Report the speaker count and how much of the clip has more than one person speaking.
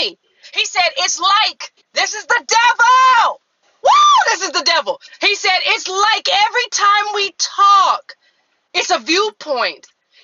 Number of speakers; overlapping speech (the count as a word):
one, no overlap